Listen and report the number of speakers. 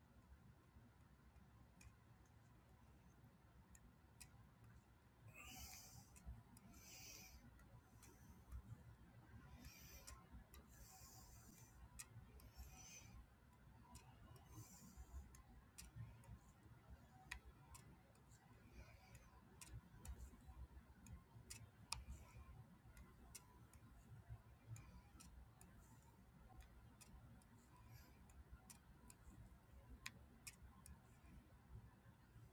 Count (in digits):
0